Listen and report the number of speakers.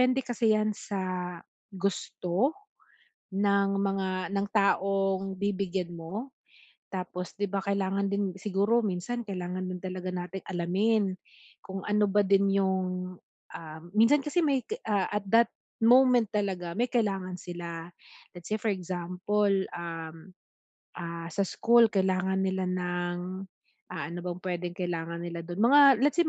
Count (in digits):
1